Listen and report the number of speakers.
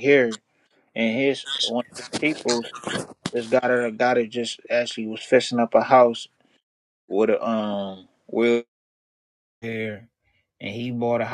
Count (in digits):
1